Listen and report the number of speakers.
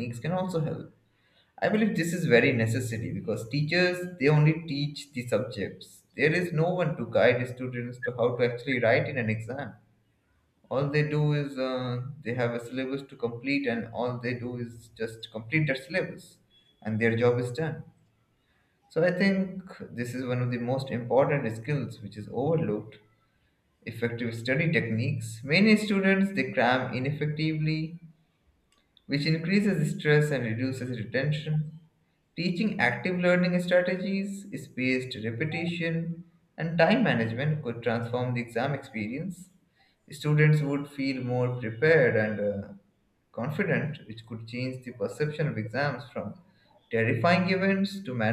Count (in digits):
1